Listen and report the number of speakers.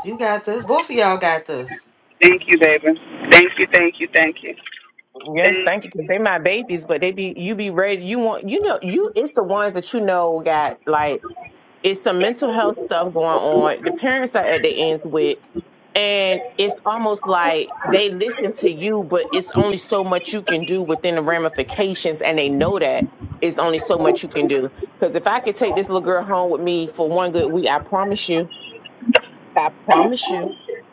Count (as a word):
three